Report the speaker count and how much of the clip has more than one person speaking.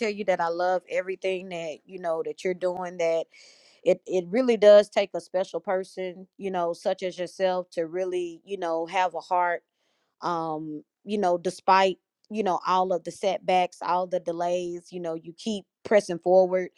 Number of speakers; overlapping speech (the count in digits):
1, no overlap